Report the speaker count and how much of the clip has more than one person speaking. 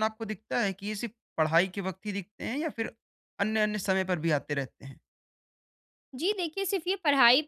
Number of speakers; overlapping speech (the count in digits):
2, no overlap